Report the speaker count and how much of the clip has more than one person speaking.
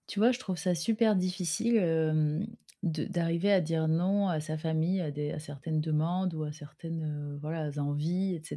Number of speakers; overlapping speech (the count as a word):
one, no overlap